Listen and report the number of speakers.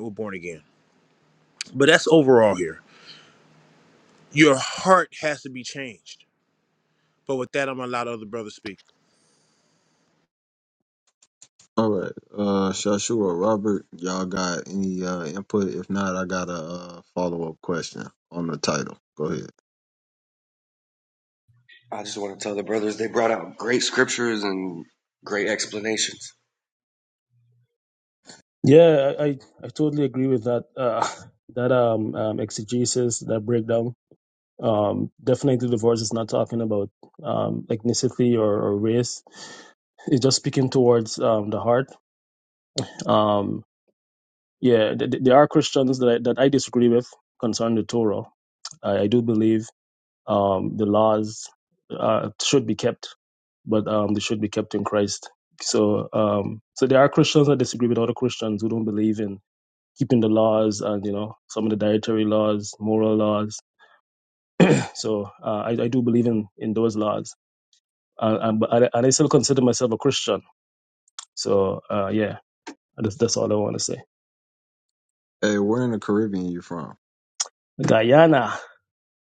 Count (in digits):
4